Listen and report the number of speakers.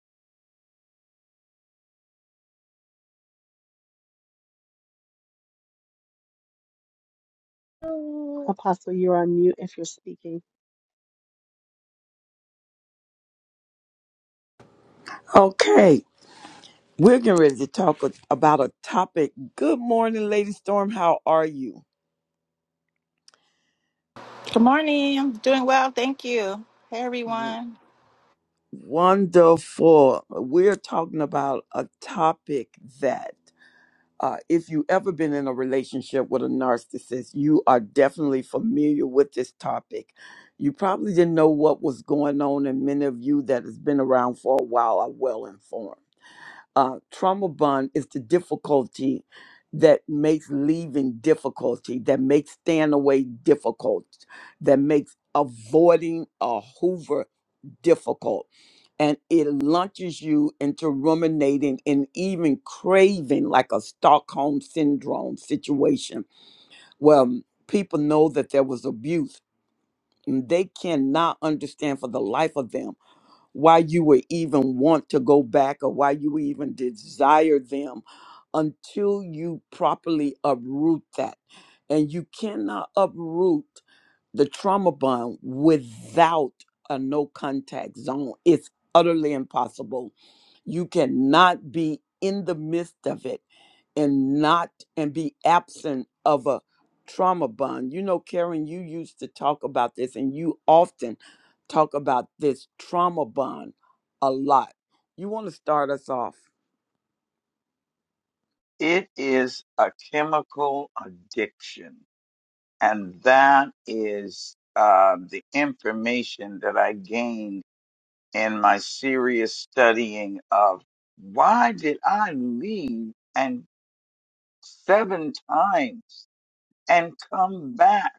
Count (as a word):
four